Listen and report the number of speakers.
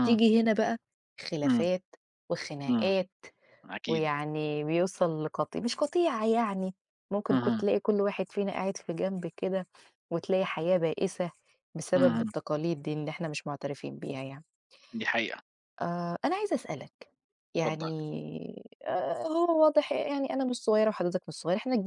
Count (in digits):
2